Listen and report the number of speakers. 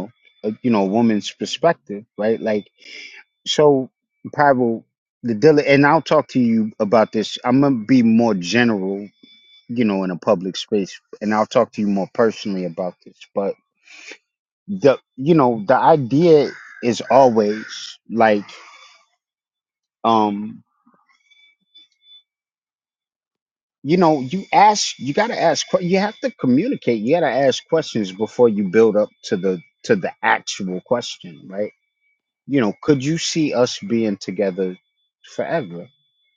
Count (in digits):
1